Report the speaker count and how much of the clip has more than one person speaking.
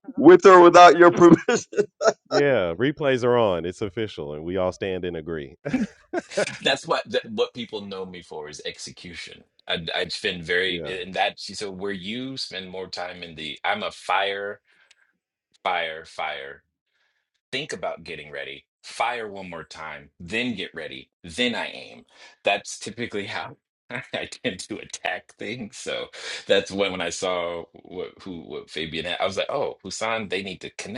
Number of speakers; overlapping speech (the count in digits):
3, about 1%